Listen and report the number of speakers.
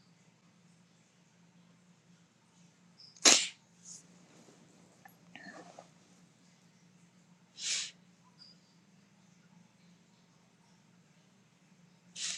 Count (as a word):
zero